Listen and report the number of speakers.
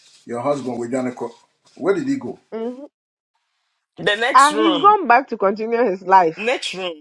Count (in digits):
3